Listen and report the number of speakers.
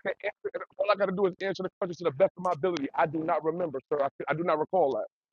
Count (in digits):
1